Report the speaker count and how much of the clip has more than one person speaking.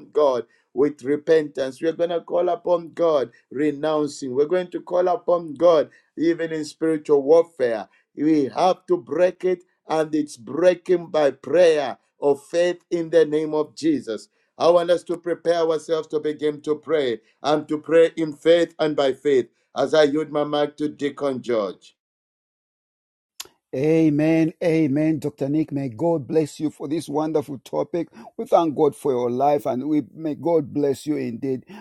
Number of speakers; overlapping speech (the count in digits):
2, no overlap